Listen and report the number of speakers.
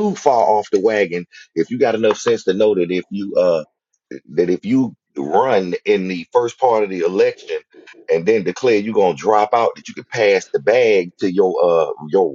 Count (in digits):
1